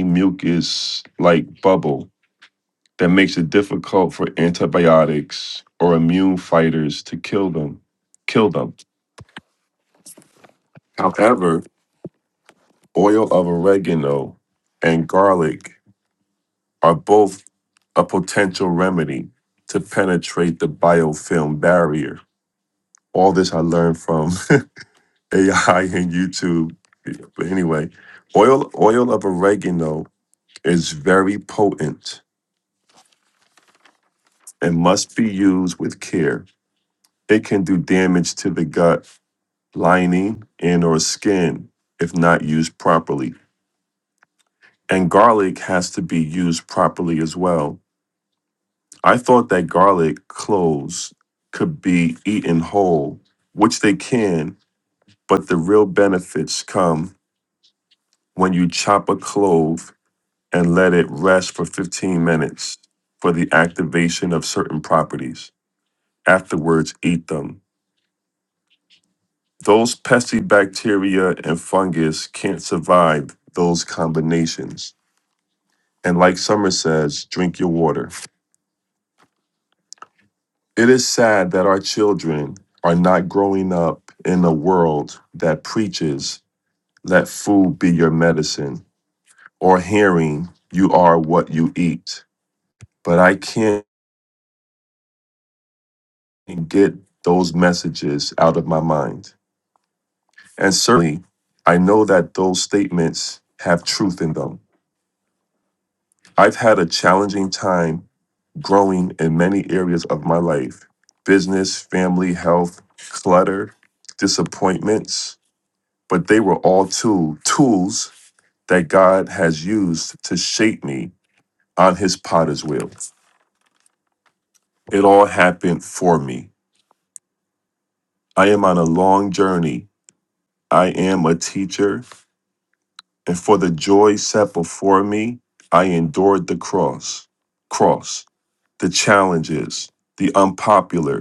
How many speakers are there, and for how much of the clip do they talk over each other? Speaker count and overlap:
1, no overlap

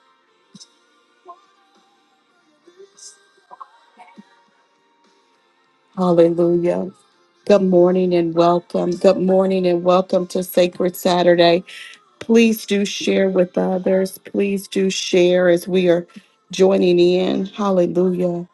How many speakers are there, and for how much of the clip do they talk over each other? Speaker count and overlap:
1, no overlap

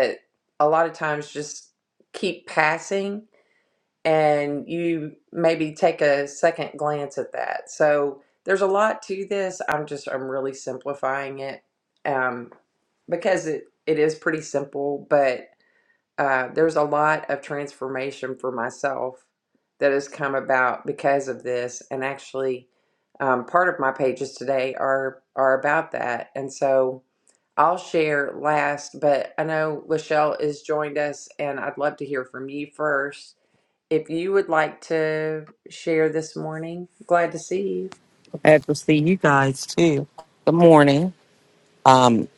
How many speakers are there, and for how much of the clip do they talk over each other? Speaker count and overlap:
2, no overlap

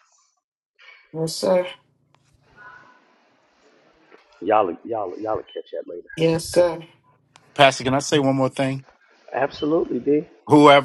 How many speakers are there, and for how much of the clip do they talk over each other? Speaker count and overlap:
3, no overlap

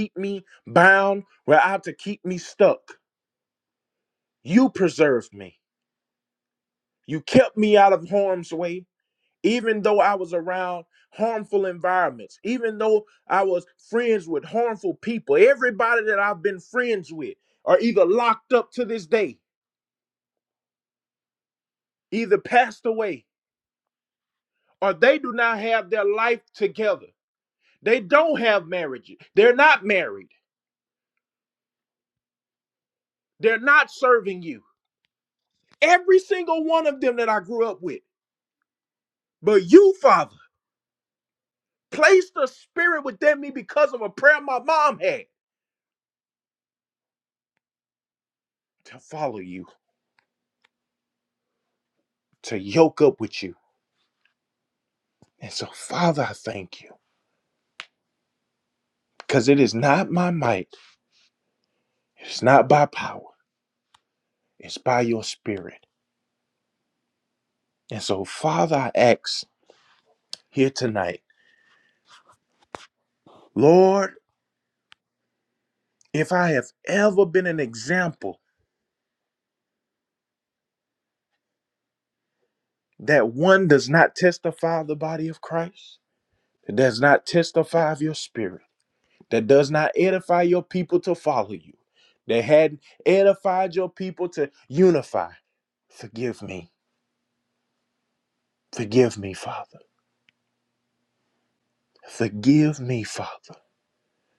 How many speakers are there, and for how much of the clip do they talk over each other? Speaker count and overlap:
1, no overlap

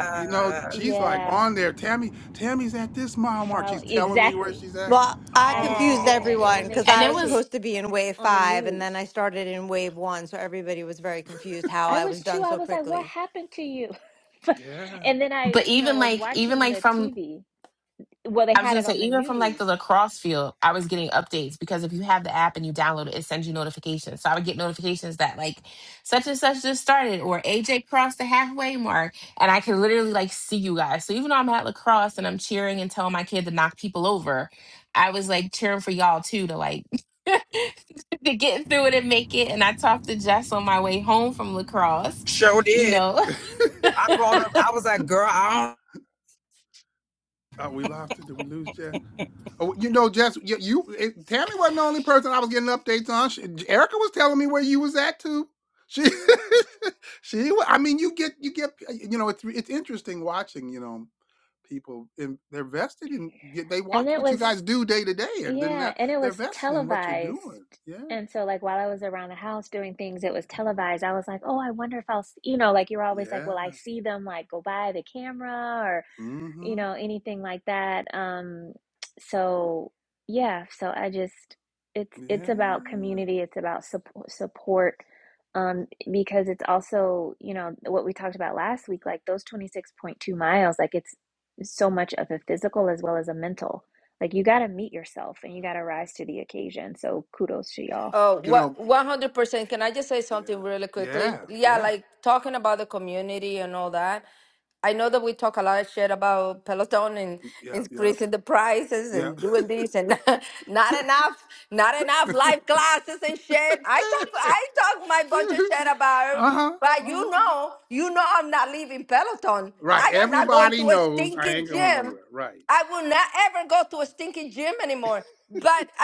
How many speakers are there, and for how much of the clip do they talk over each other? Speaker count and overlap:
6, about 15%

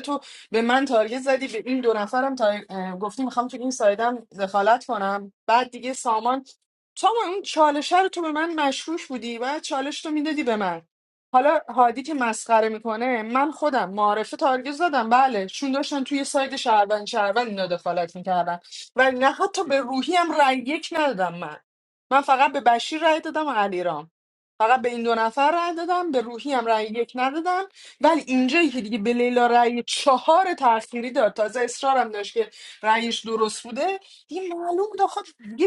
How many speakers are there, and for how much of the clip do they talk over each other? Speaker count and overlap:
1, no overlap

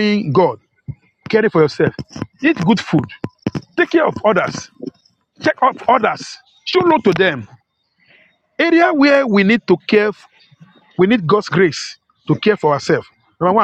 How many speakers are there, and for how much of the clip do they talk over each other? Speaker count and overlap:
1, no overlap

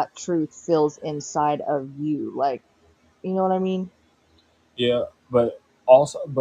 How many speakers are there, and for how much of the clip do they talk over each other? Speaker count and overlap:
2, no overlap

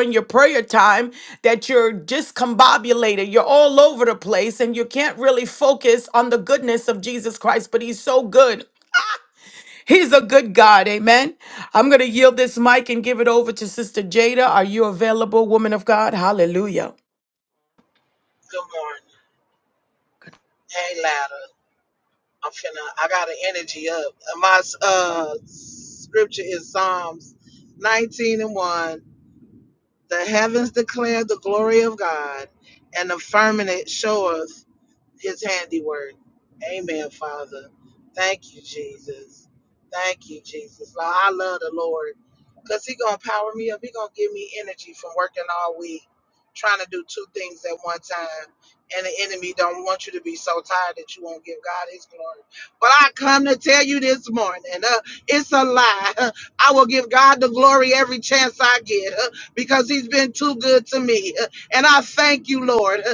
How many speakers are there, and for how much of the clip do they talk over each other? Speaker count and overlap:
2, no overlap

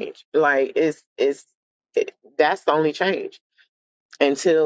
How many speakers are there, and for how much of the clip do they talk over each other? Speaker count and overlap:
1, no overlap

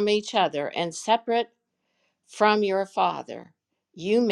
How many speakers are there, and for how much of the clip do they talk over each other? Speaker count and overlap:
1, no overlap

